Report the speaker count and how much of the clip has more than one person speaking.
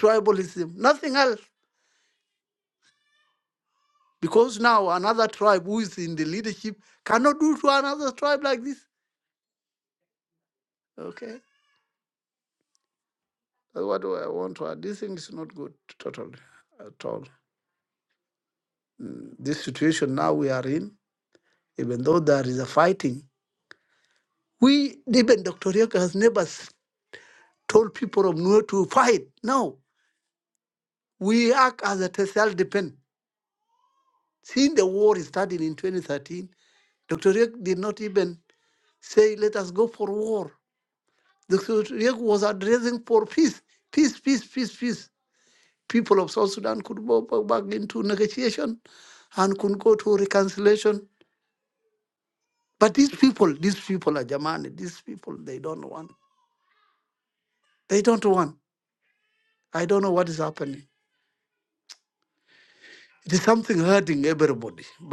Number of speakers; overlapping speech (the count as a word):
one, no overlap